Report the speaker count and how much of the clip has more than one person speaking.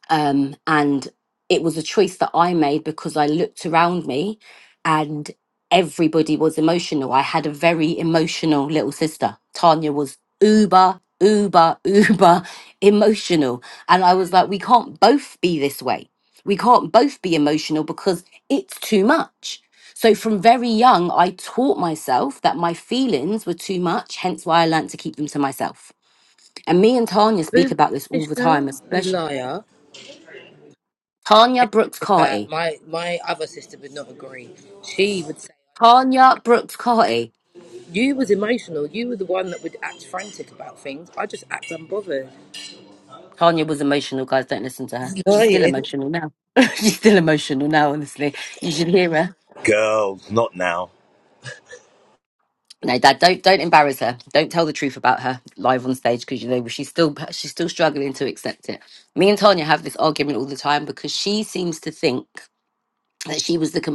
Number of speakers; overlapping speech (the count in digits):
3, about 4%